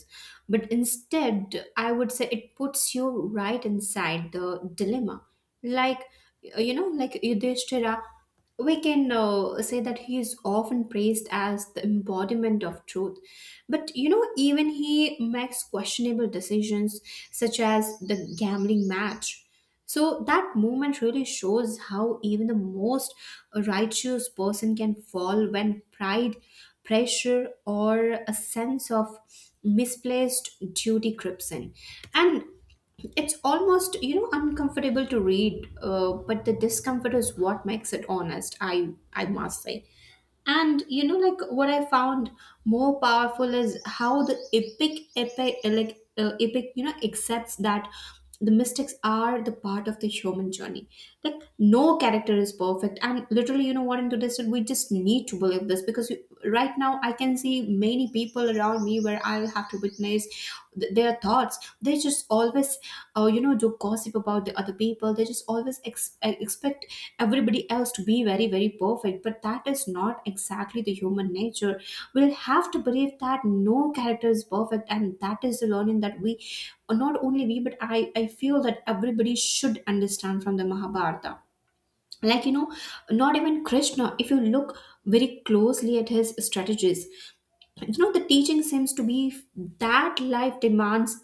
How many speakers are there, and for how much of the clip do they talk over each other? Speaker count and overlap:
one, no overlap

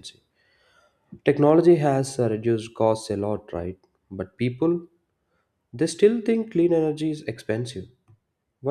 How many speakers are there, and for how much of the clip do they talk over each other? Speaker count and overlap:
one, no overlap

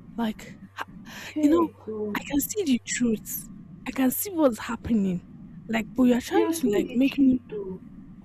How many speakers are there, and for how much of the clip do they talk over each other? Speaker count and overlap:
two, about 17%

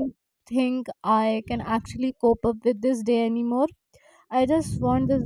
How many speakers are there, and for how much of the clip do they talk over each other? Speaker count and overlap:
one, no overlap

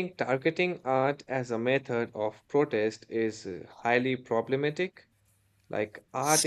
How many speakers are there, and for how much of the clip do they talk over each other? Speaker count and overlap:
one, no overlap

